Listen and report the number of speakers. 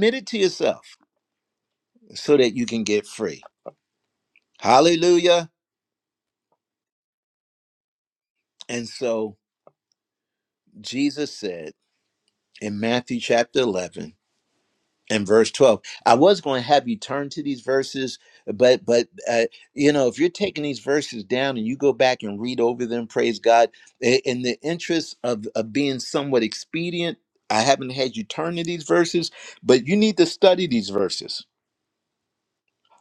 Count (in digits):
1